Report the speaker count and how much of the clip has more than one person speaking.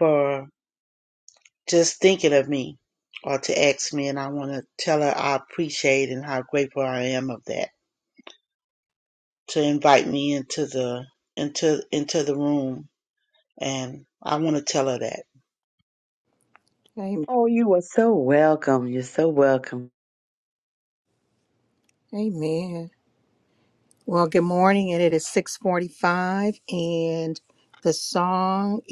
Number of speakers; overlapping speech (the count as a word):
three, no overlap